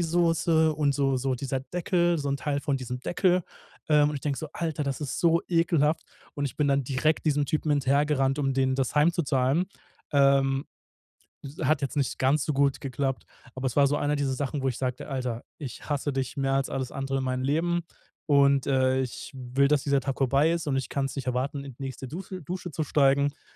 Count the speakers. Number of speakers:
one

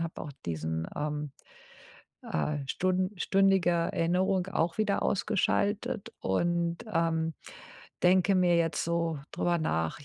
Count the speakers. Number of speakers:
one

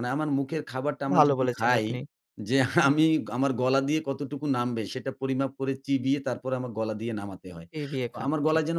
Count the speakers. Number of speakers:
two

